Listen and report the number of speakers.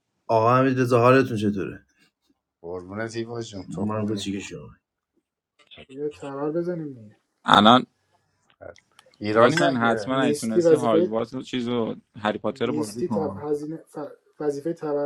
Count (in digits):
4